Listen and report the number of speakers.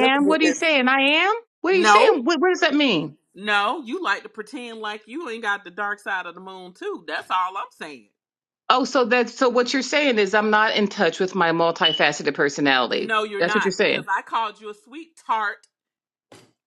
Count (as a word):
two